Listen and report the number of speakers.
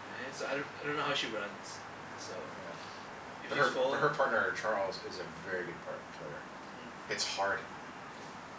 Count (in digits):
2